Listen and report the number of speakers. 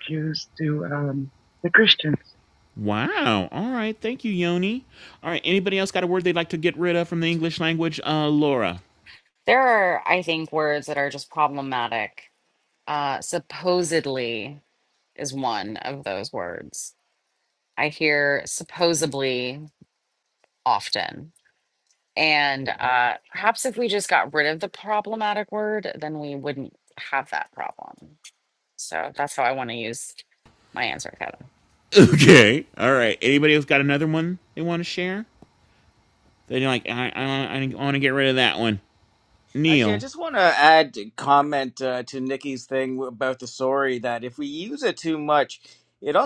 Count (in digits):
4